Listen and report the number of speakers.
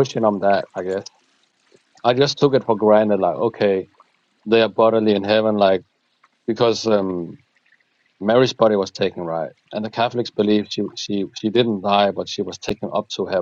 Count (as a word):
one